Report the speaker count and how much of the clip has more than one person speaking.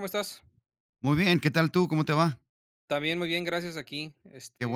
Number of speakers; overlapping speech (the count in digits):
2, about 3%